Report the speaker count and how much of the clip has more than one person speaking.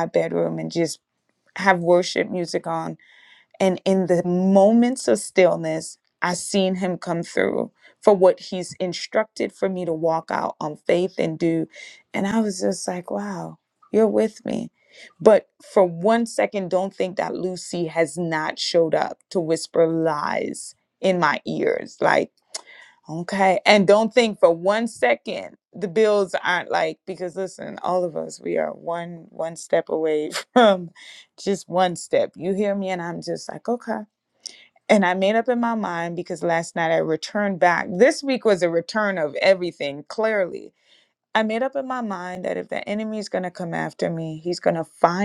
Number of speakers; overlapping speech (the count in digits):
1, no overlap